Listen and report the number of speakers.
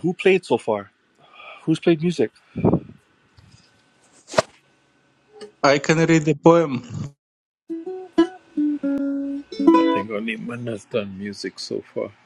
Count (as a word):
three